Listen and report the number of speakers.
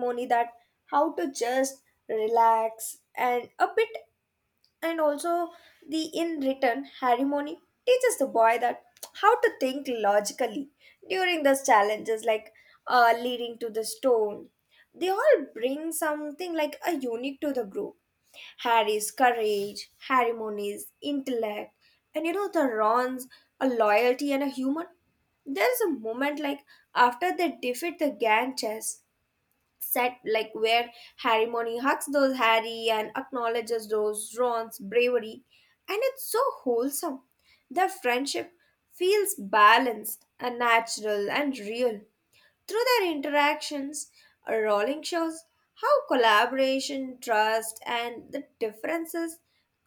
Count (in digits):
1